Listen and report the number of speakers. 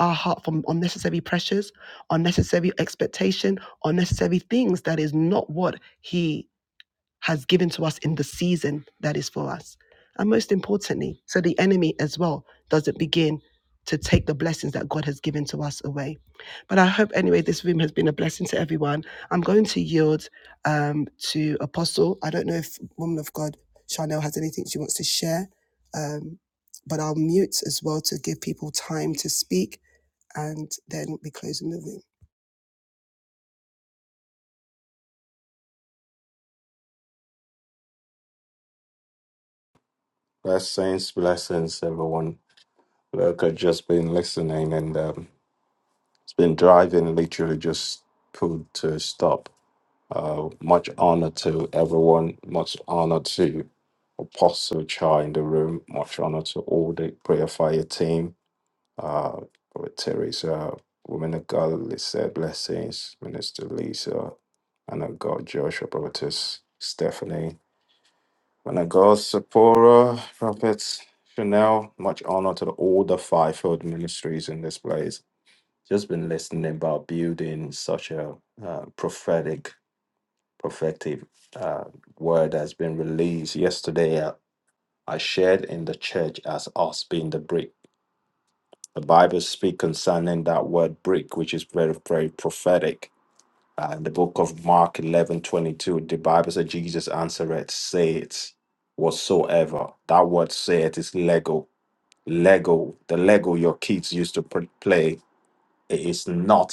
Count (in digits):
2